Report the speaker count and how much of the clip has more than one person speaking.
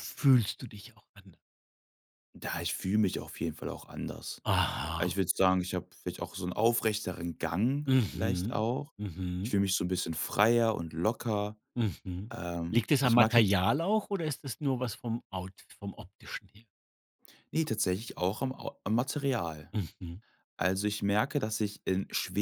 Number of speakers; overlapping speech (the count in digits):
2, about 7%